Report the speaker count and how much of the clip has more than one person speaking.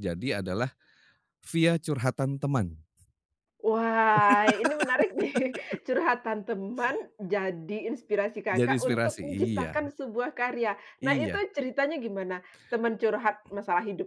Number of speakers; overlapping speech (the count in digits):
2, about 12%